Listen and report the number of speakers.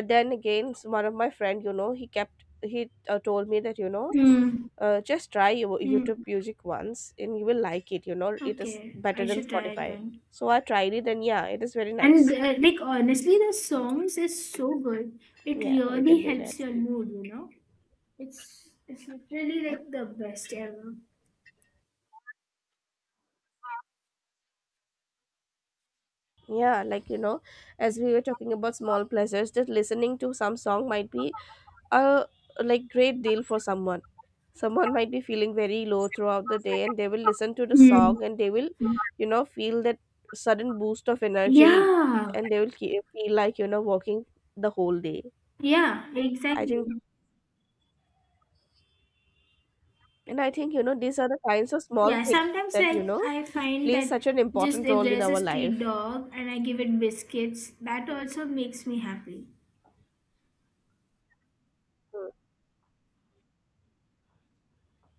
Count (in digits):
2